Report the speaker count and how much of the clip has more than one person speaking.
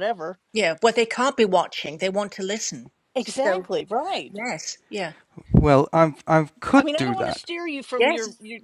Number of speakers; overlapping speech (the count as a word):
three, about 15%